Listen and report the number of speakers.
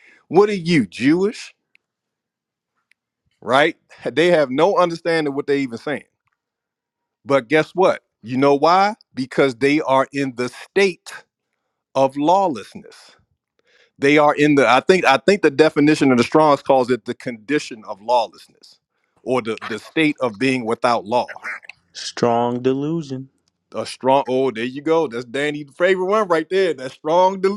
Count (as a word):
two